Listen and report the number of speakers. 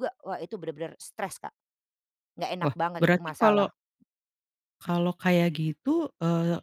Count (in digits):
2